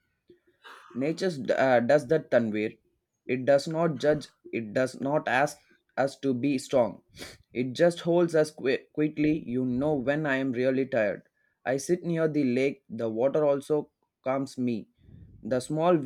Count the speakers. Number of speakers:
1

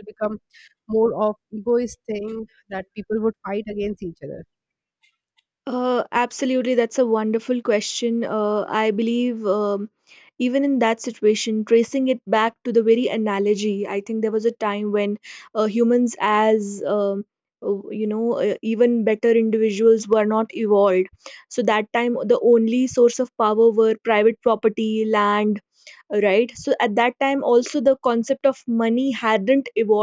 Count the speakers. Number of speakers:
2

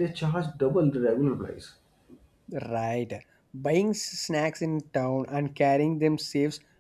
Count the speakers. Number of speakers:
2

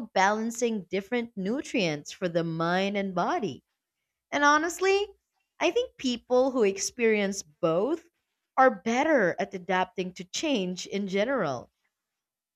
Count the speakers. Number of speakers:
1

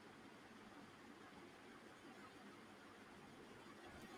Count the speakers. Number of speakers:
0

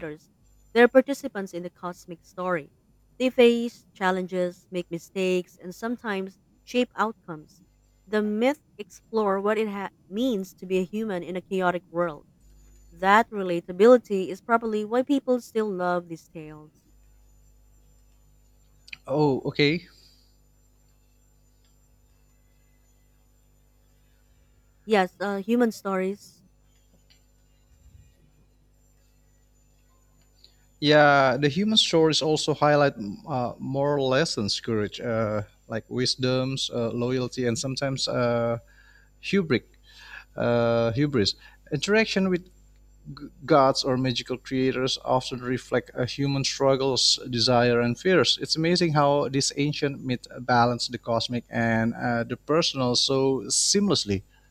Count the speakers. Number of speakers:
2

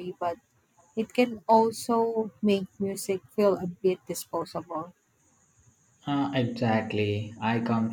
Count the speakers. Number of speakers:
2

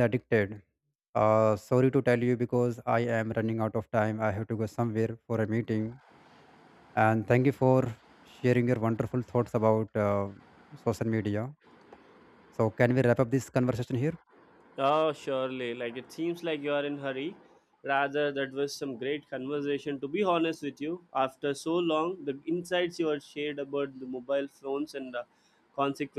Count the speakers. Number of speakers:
2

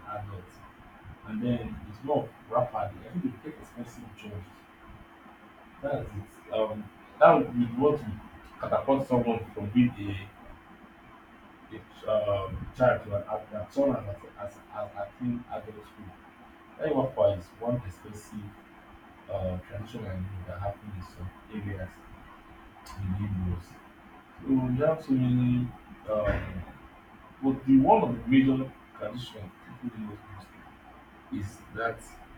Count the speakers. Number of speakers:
1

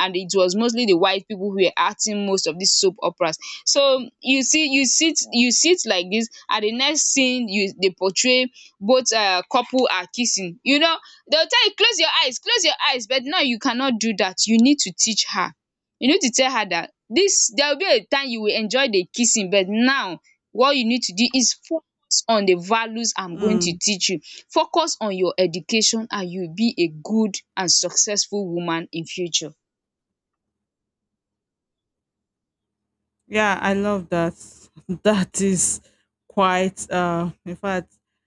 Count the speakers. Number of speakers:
2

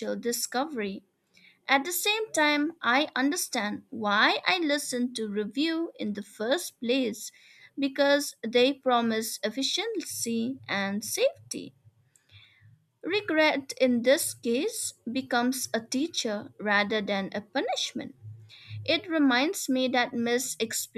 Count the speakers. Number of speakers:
1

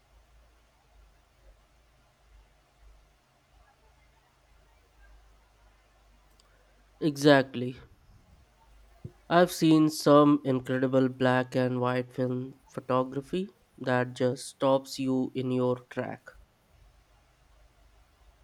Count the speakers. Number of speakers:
1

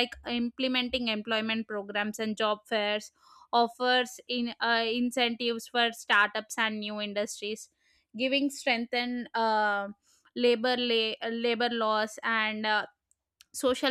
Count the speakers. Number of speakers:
1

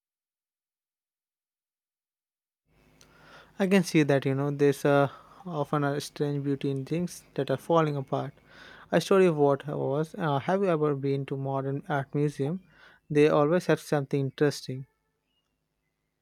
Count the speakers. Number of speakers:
1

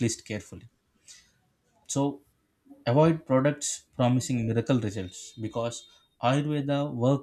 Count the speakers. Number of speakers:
1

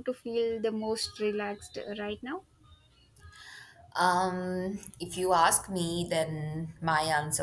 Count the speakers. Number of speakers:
2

